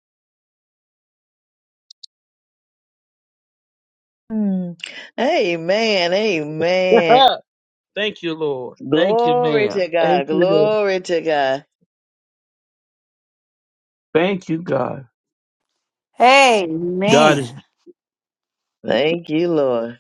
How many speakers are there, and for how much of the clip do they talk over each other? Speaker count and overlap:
three, about 10%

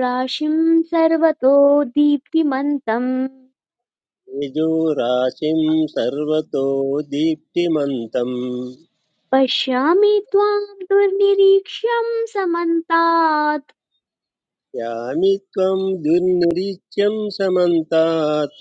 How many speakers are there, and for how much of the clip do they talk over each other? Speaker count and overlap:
two, no overlap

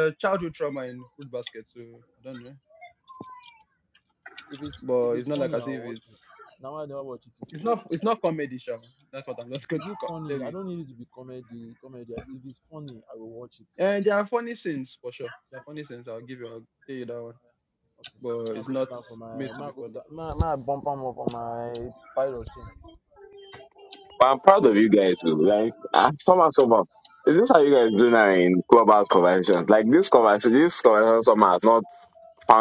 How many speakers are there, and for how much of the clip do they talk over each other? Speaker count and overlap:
three, about 11%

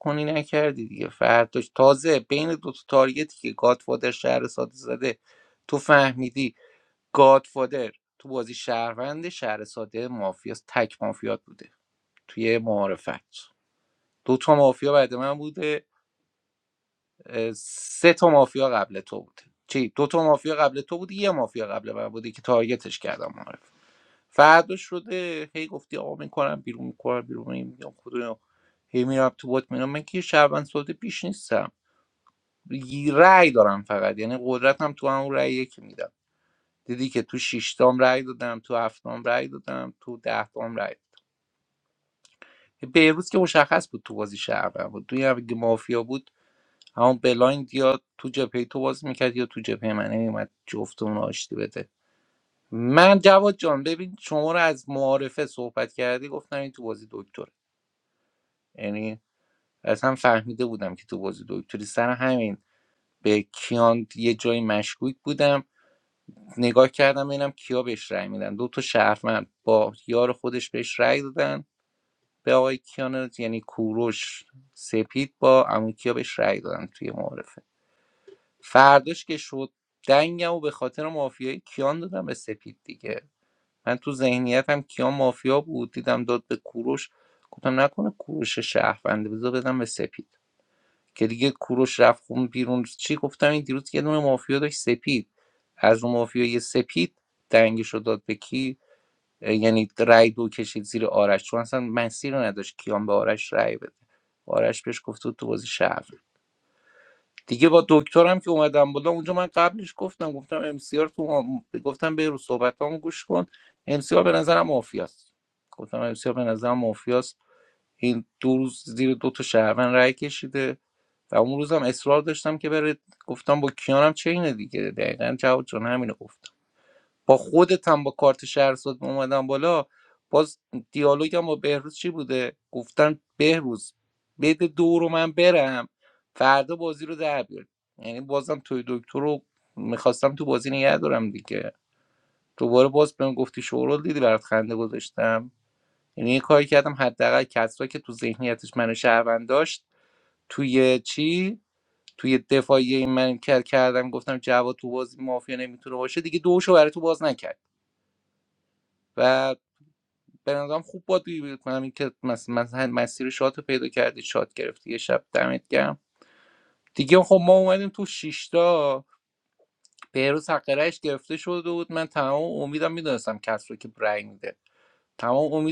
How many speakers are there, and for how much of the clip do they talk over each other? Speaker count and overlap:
one, no overlap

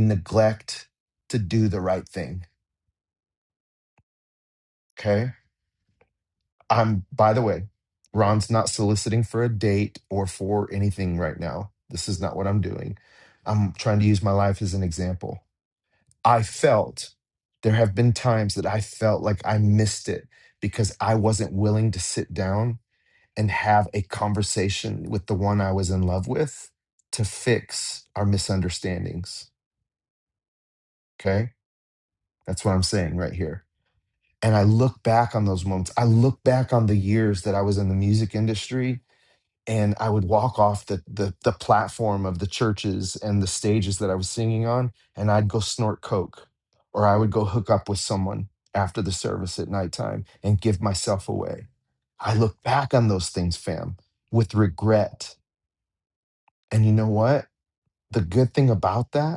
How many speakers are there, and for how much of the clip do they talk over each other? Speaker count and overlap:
one, no overlap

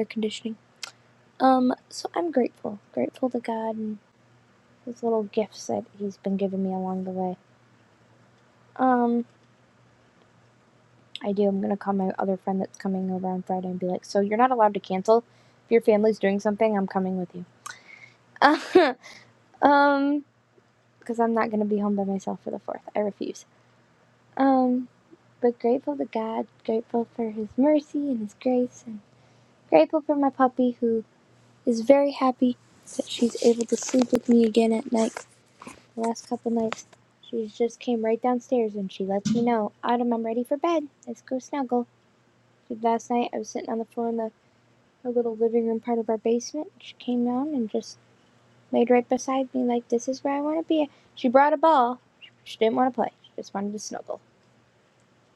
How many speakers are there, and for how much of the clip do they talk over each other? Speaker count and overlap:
one, no overlap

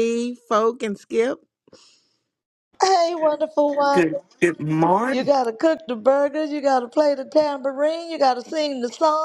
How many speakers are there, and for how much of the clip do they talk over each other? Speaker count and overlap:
three, about 5%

